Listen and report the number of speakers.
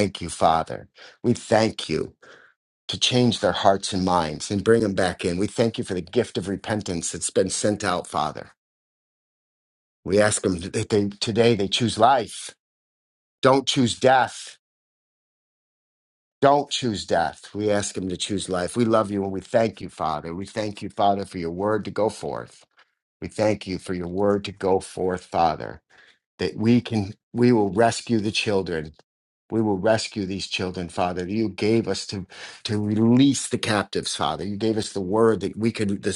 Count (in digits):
1